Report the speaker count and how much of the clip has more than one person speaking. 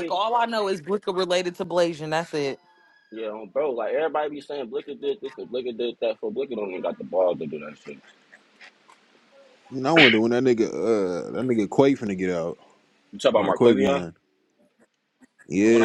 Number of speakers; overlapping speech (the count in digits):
3, about 6%